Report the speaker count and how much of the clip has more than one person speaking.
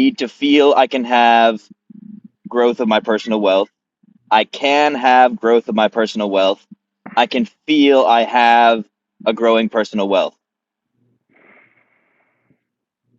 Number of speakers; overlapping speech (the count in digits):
1, no overlap